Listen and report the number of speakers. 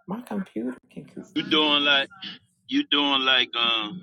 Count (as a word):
two